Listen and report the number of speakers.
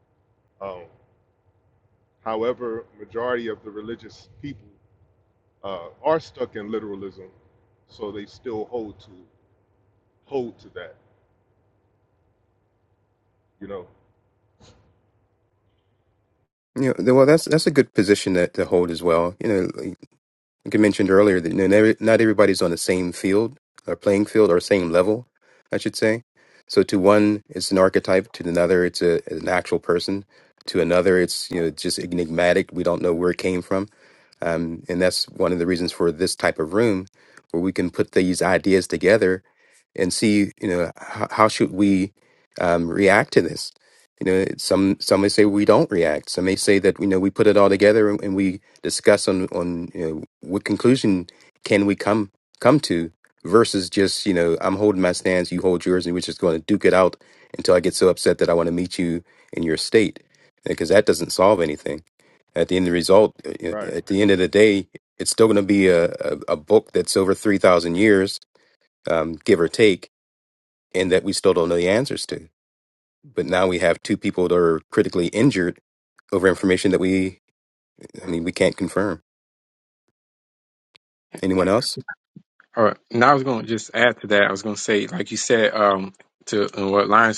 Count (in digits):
3